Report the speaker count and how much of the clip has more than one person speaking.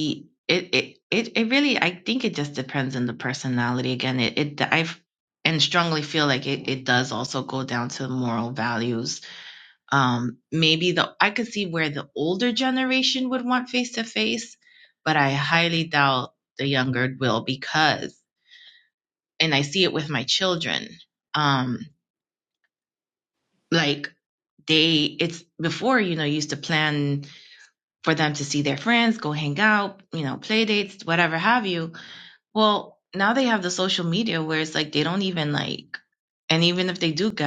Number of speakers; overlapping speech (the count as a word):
one, no overlap